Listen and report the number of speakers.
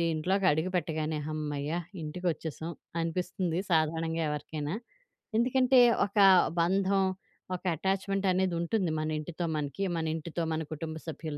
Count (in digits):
1